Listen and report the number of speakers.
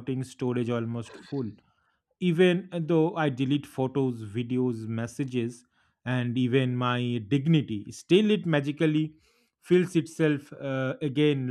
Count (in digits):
1